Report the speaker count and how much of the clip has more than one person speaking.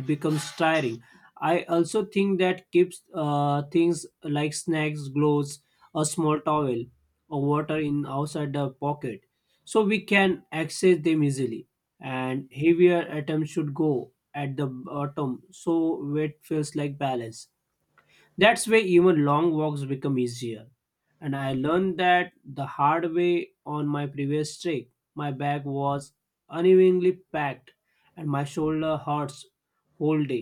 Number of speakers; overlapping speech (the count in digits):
1, no overlap